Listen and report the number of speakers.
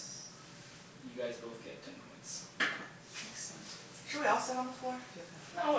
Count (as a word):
two